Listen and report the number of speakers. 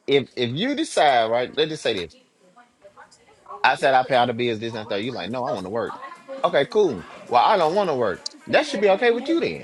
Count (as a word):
one